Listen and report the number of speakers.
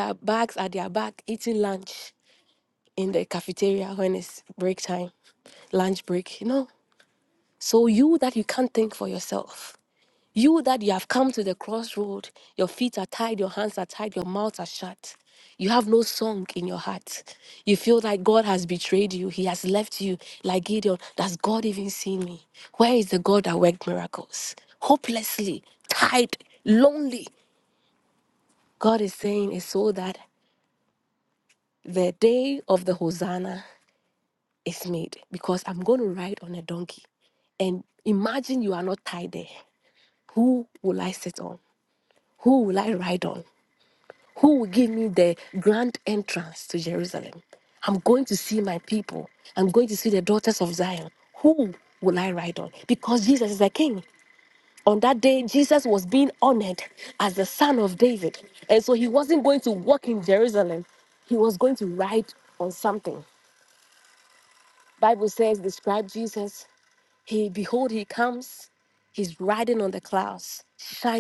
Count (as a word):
one